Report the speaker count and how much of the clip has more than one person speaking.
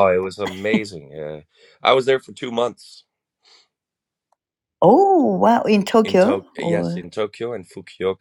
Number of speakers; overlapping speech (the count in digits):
2, about 12%